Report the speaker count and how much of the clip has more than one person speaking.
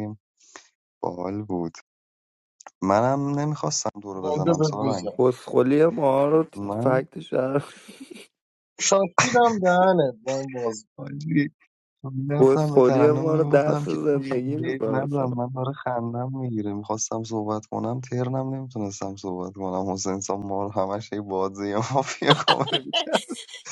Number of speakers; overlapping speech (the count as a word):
three, about 14%